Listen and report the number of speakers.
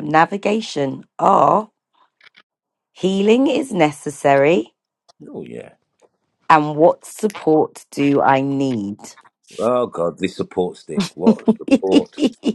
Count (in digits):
2